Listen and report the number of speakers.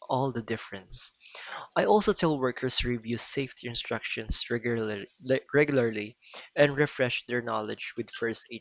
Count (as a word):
one